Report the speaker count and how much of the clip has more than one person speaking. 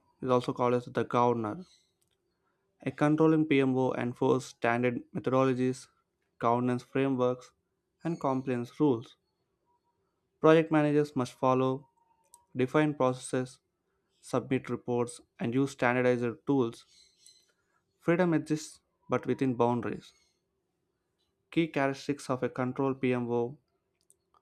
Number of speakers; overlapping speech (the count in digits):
1, no overlap